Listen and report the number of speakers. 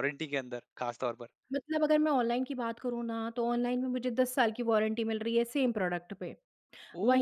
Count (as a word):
two